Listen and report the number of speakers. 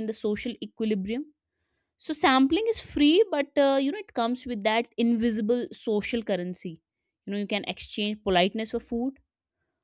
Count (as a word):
one